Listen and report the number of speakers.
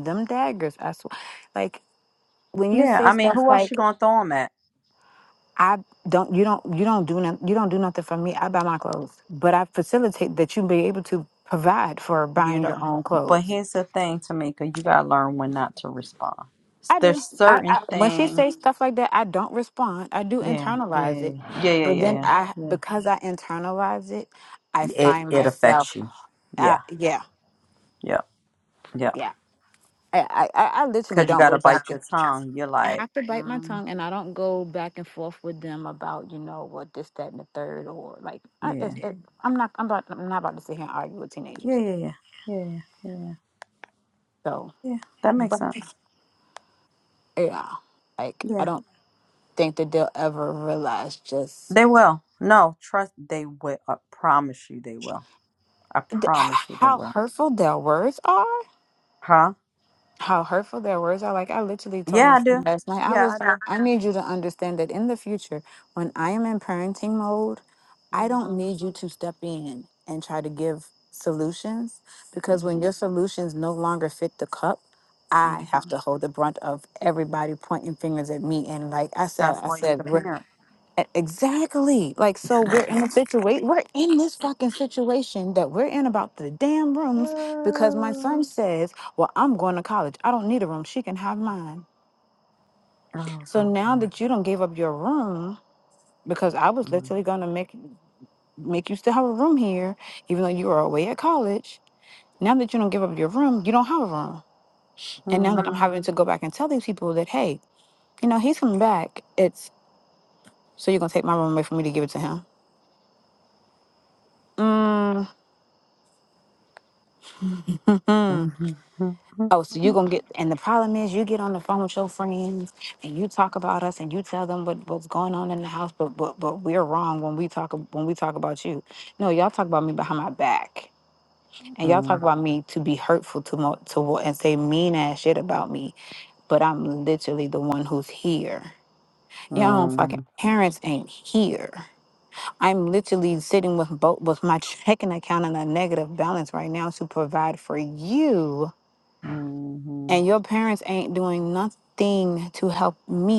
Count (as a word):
two